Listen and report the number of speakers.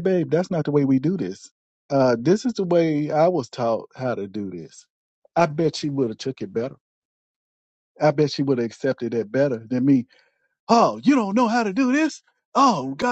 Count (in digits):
1